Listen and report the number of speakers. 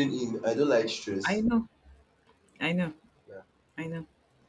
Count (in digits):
2